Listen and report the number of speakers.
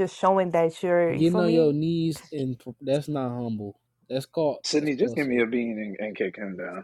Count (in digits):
3